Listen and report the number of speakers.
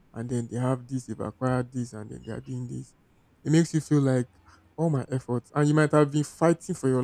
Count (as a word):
one